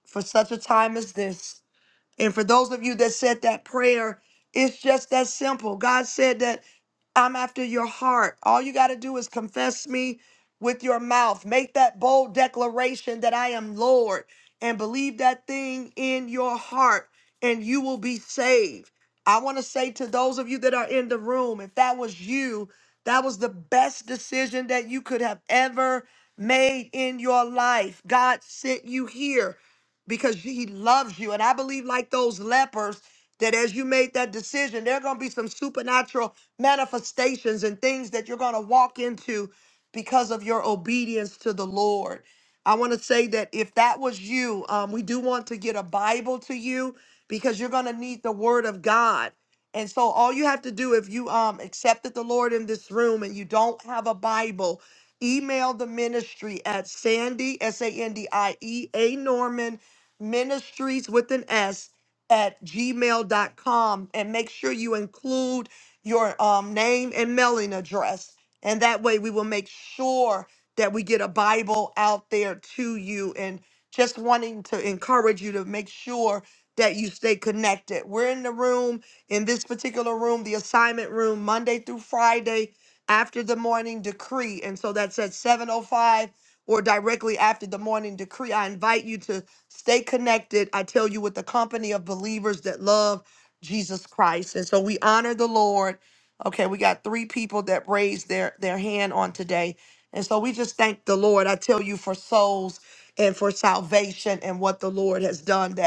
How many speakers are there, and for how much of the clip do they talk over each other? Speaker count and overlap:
1, no overlap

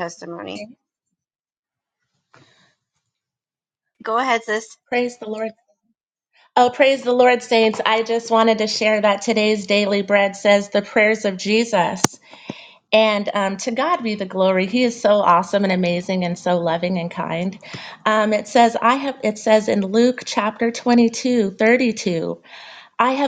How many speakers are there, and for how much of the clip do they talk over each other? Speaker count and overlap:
2, under 1%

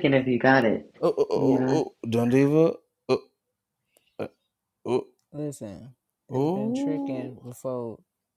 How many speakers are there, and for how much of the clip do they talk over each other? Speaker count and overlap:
3, about 18%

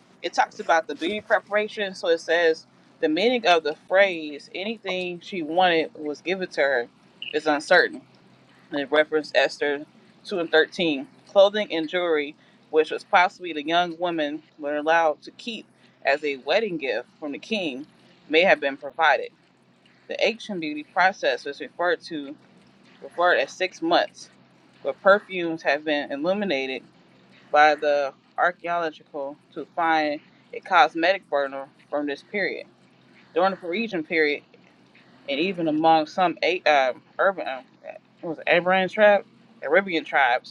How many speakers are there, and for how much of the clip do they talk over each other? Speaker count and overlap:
1, no overlap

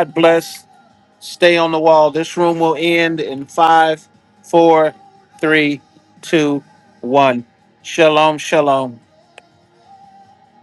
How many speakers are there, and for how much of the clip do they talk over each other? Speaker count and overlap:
1, no overlap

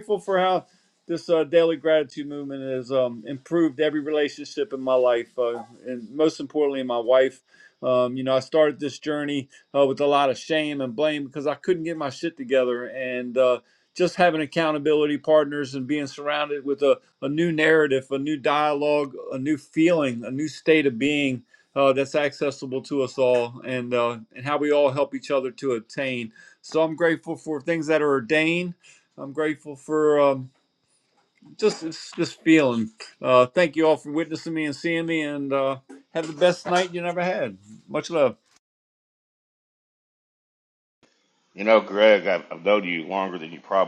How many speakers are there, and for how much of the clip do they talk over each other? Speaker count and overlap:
2, no overlap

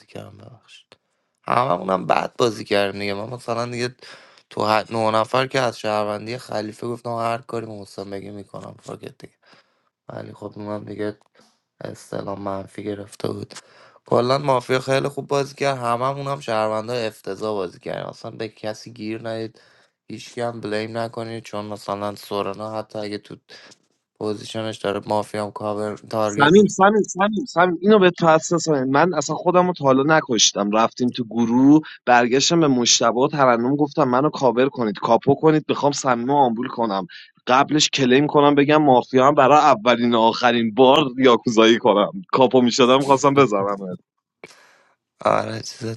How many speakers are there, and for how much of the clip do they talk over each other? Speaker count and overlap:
2, about 1%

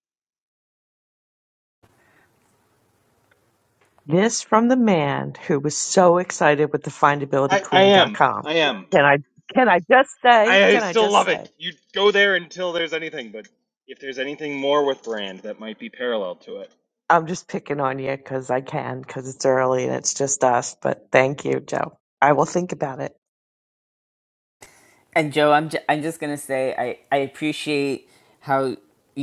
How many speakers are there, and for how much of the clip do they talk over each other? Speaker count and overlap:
3, about 5%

